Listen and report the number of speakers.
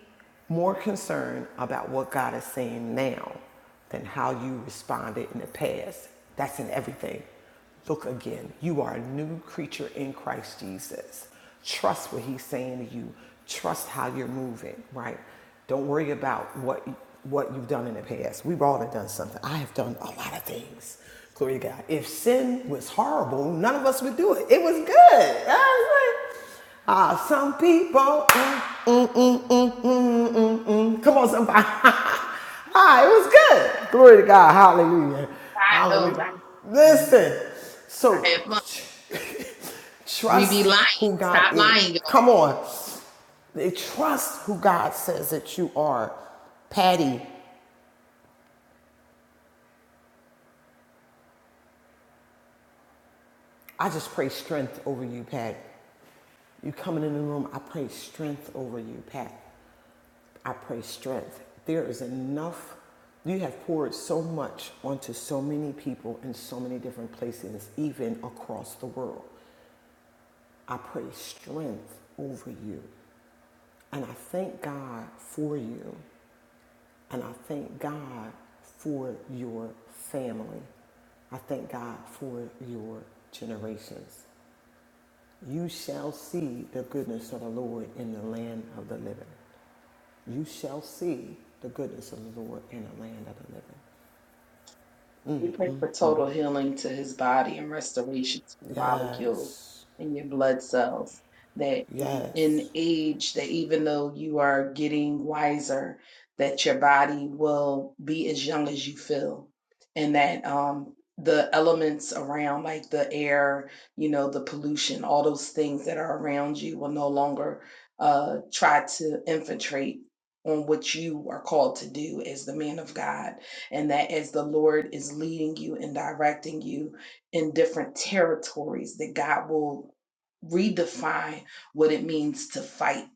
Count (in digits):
2